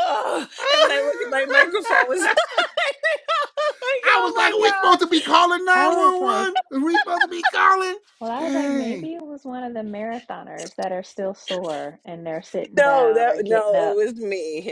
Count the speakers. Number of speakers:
three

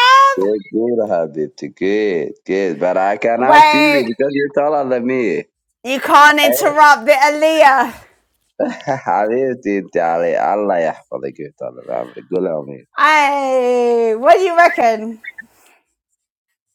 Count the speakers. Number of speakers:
two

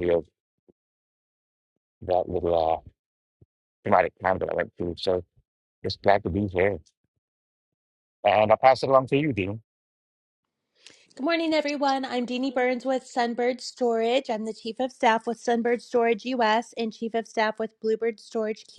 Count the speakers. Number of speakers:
two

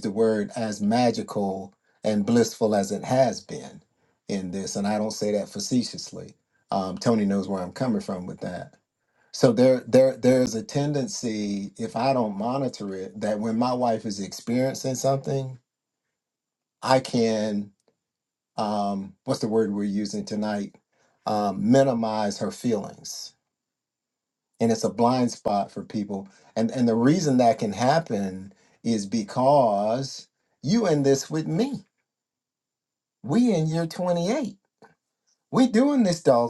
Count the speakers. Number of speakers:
one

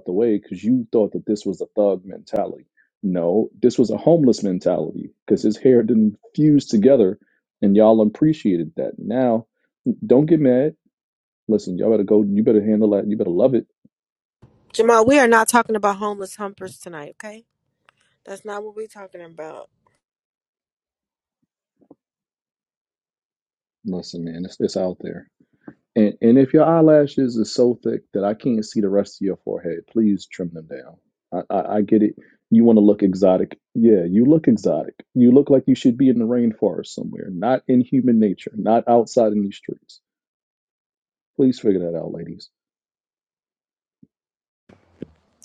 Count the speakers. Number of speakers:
two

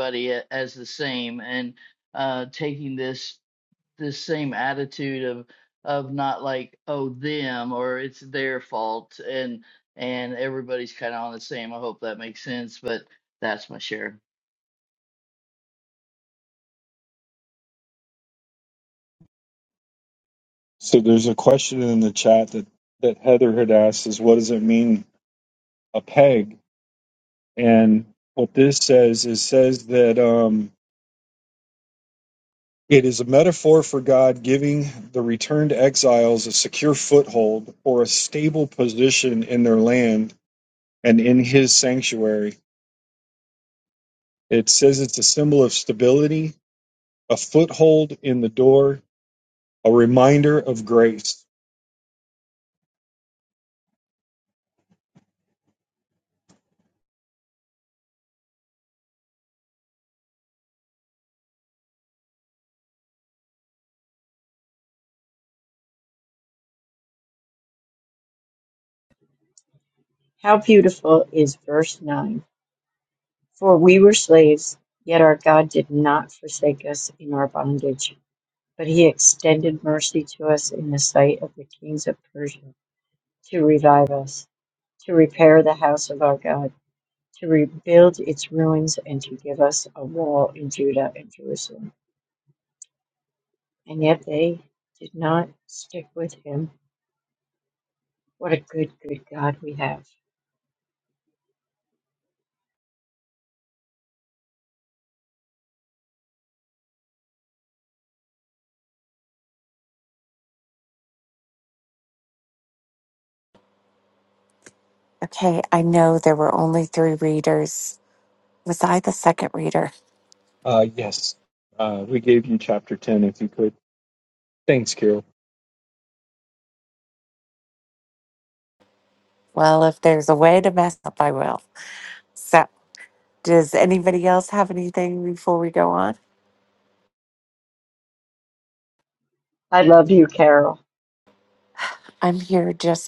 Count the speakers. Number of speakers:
four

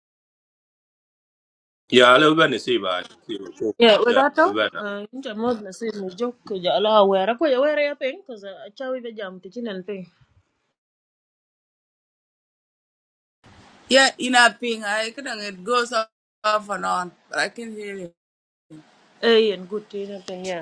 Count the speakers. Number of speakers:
three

